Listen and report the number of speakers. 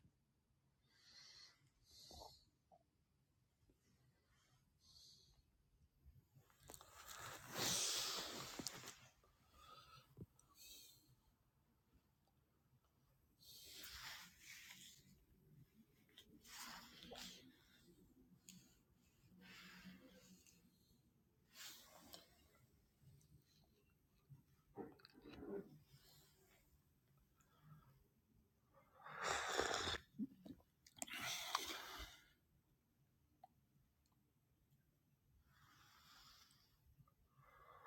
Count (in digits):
0